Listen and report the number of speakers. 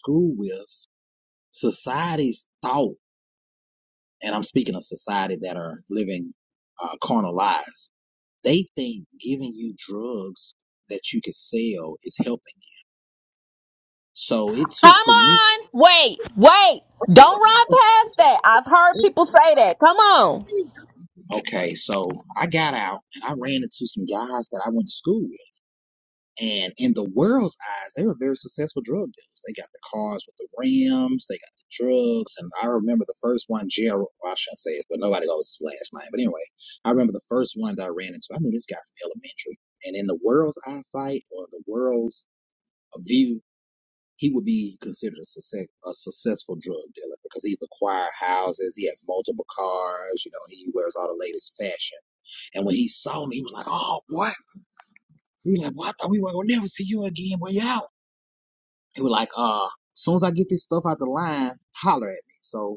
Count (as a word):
two